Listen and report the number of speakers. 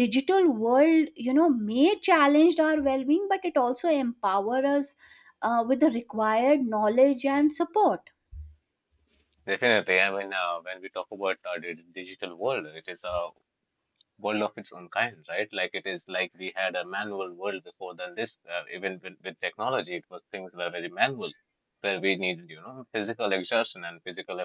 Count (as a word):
two